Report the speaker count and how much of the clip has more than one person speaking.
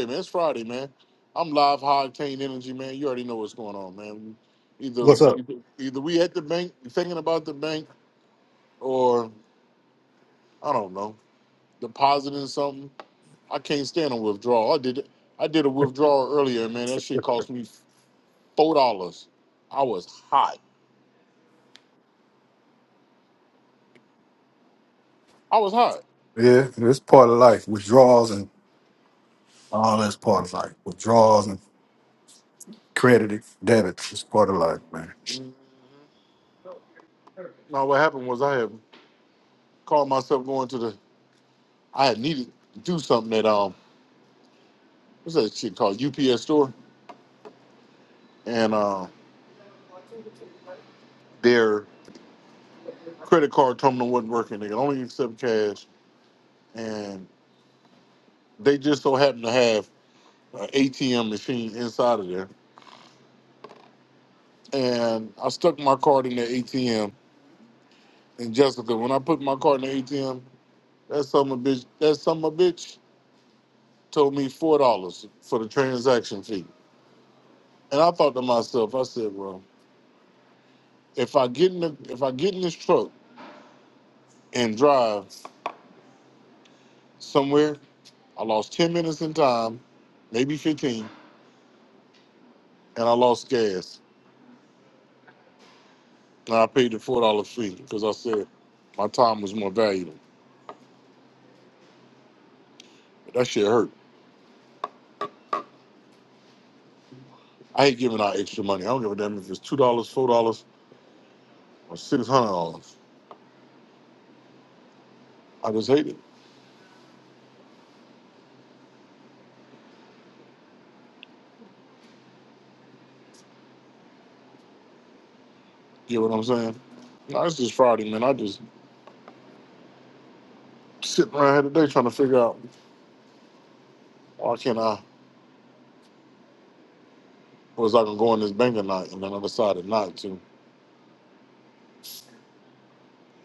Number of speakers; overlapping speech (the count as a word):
two, under 1%